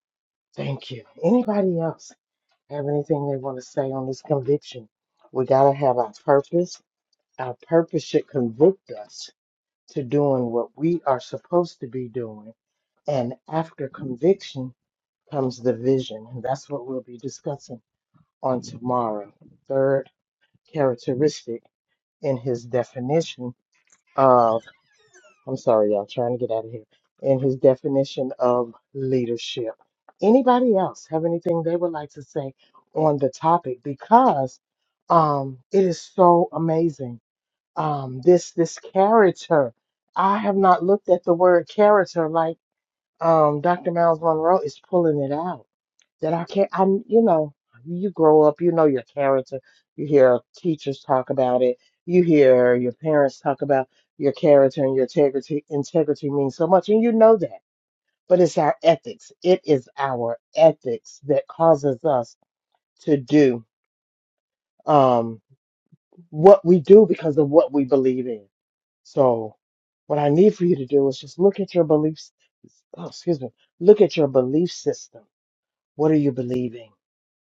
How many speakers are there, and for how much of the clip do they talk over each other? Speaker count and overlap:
1, no overlap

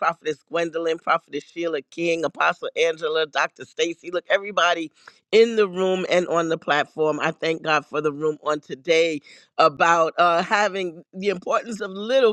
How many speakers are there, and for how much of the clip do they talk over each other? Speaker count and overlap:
1, no overlap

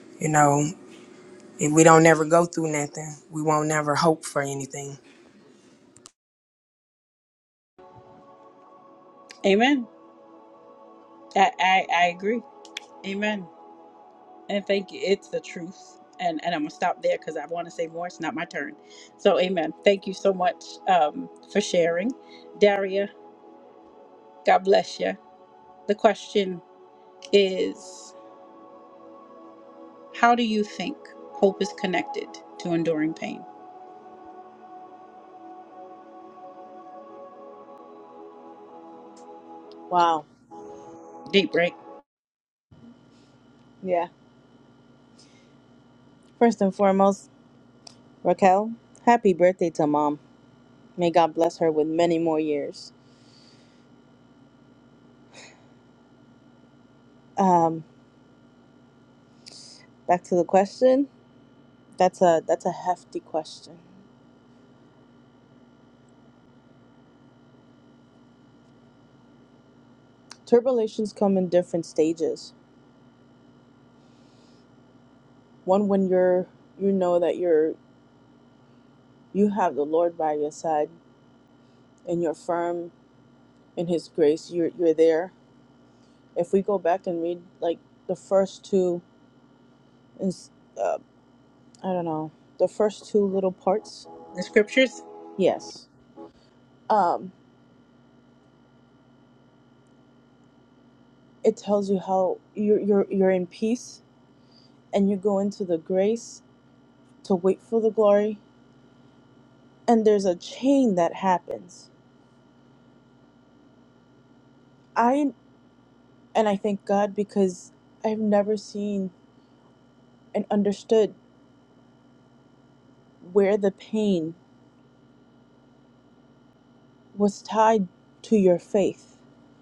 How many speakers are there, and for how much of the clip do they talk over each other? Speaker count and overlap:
3, no overlap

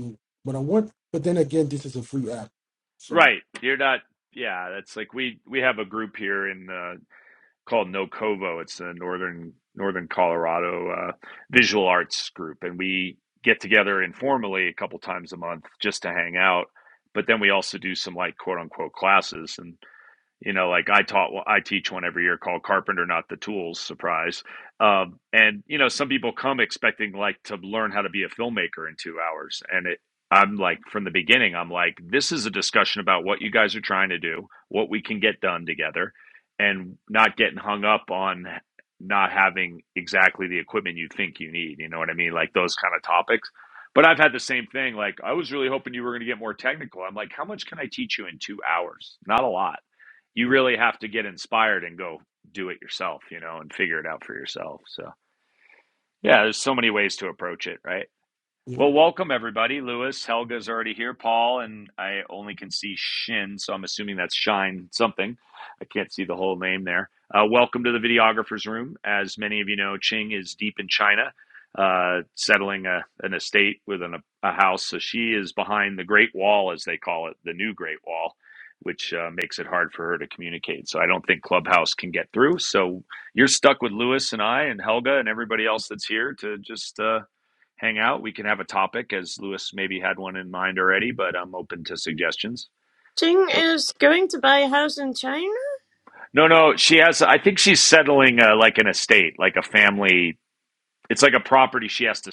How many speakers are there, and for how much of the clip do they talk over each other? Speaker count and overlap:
3, under 1%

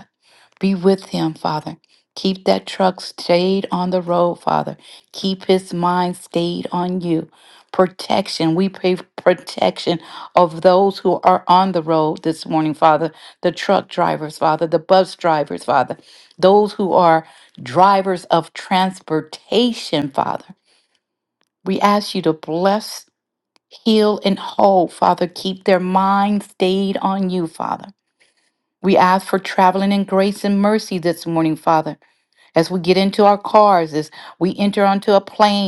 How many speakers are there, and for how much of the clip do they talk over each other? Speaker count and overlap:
1, no overlap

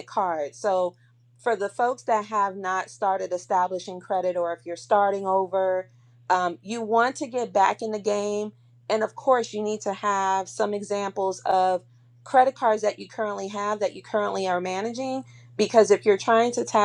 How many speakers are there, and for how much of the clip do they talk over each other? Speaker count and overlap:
1, no overlap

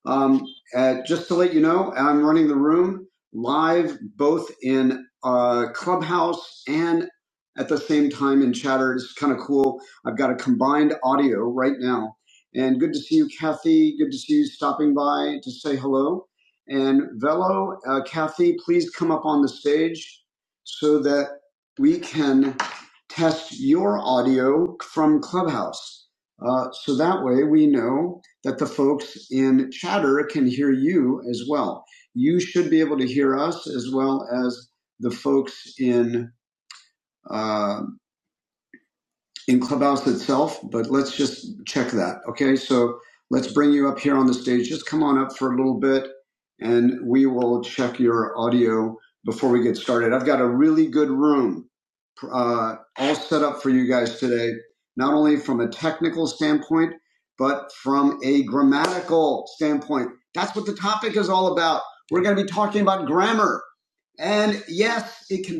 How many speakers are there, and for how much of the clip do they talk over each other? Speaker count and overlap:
1, no overlap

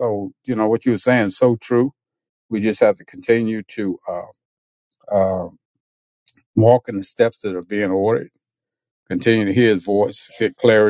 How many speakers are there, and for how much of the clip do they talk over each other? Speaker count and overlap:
1, no overlap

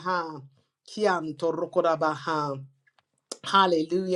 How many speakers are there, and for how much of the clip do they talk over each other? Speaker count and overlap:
1, no overlap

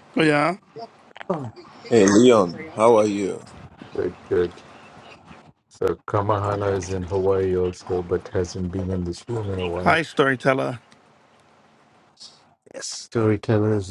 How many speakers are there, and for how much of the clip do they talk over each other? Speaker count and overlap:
3, about 1%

